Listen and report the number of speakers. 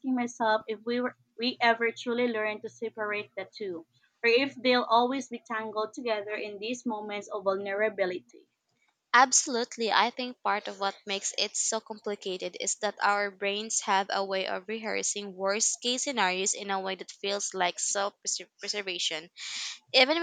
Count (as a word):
two